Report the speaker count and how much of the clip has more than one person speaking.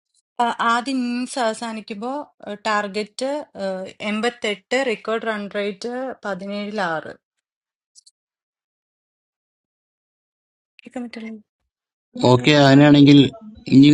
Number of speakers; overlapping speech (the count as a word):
two, no overlap